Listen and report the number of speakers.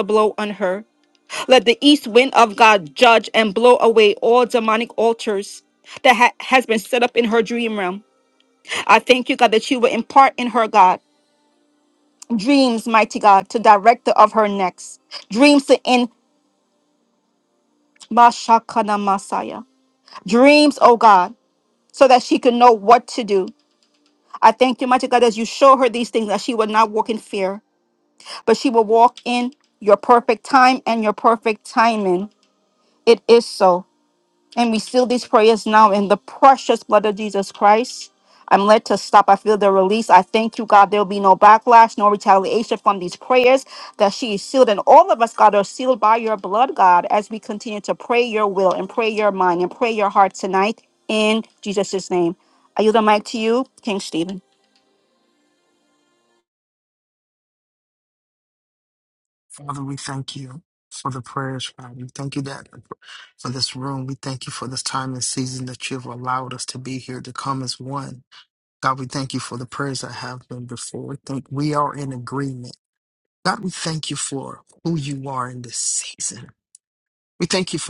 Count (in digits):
2